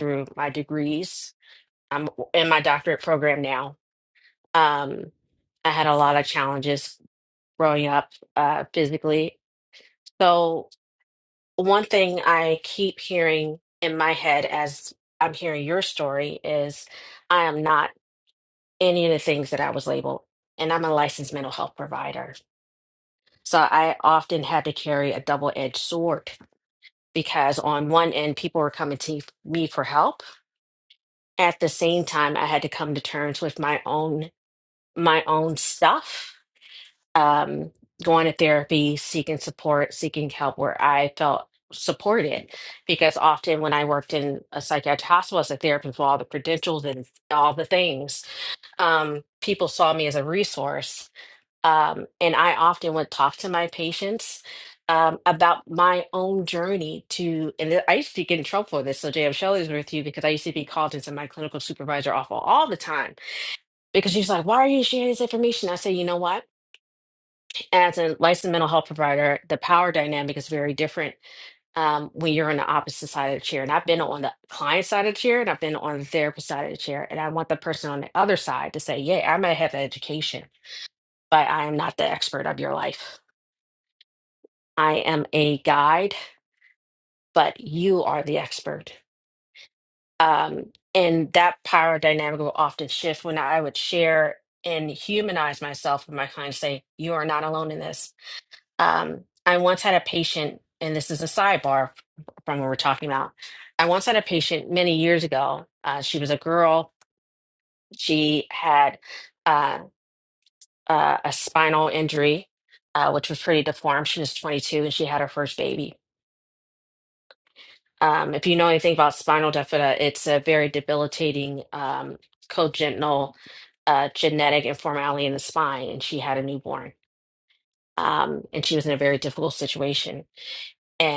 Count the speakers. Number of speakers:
1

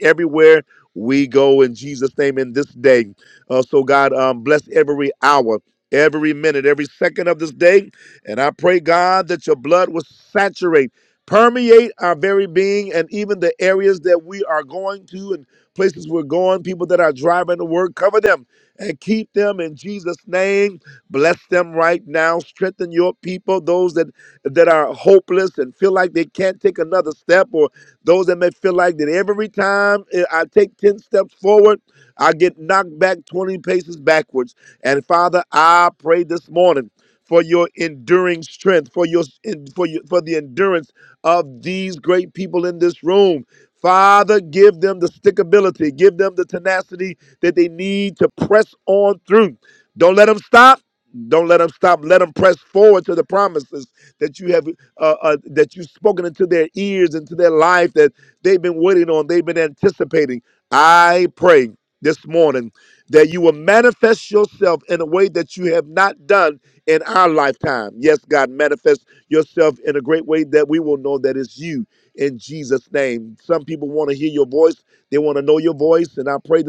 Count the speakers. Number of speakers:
1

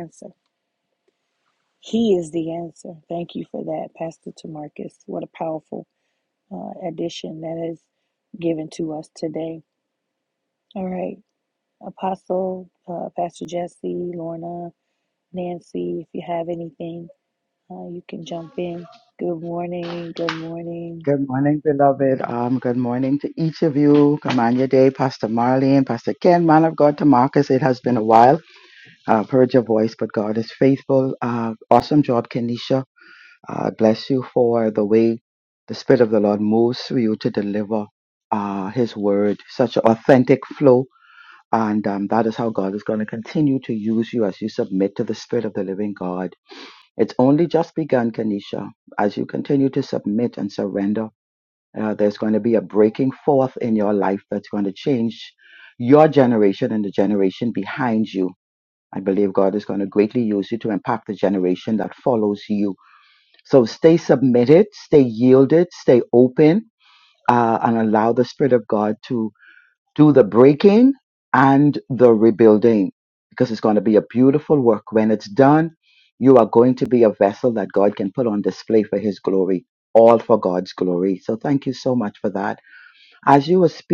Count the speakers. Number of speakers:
2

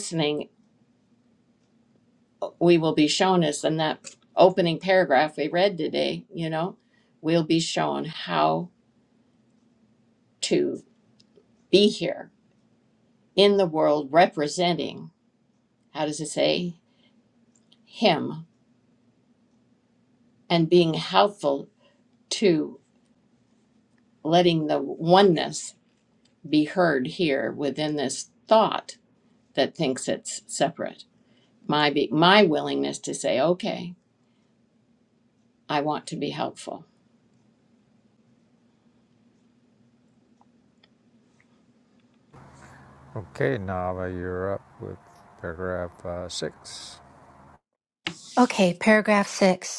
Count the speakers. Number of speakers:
3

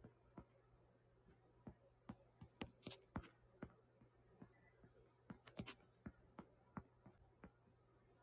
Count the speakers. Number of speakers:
0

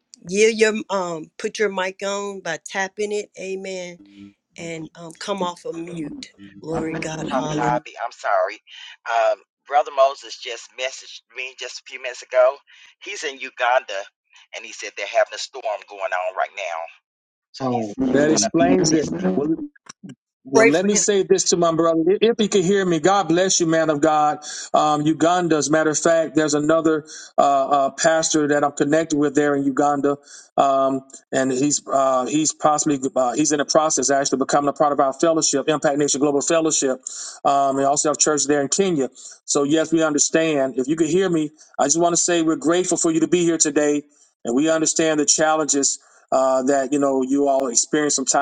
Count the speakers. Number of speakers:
3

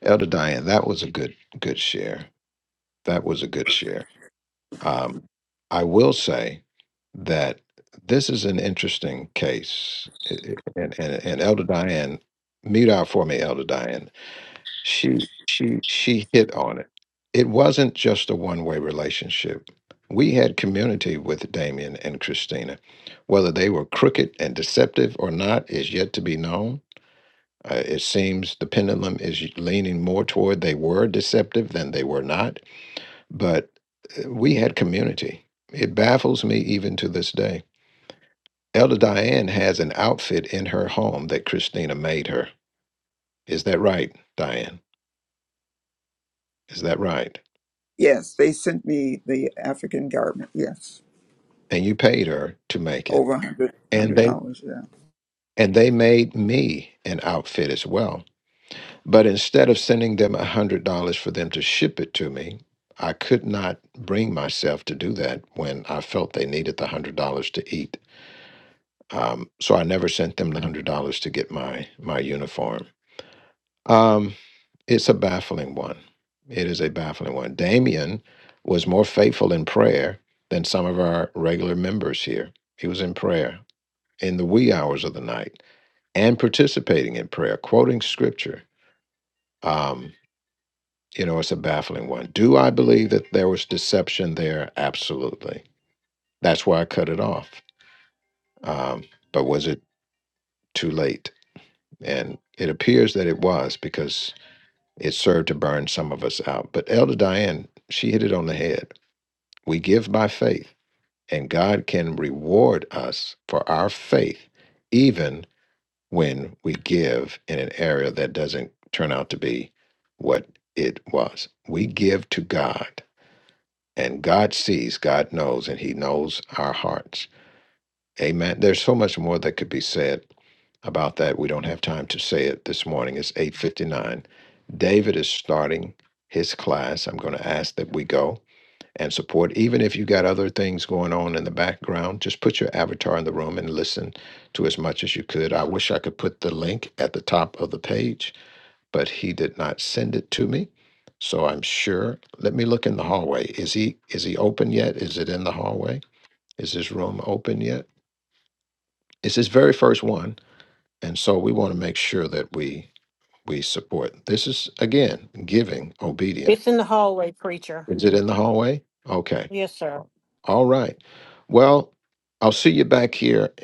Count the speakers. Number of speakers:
3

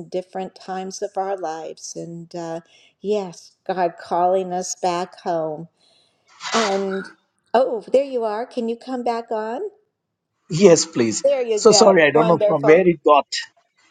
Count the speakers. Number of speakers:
2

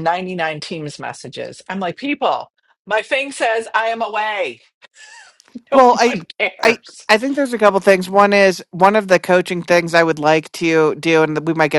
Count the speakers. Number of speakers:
2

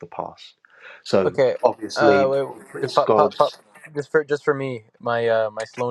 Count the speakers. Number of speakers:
2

